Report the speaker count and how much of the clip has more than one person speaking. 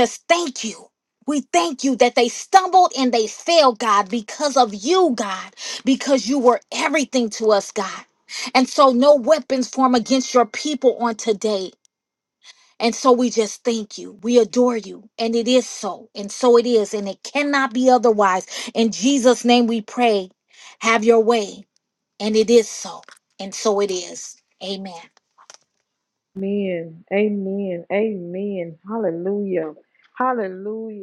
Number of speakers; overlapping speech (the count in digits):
2, no overlap